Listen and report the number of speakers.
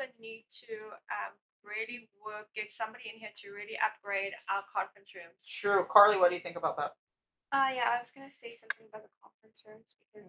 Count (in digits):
3